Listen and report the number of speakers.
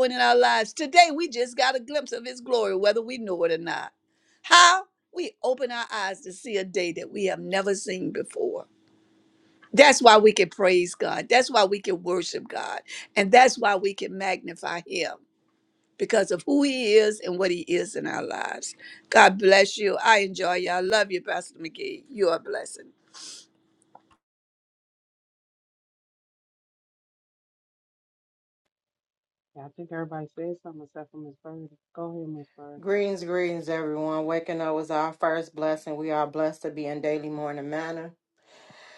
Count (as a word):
three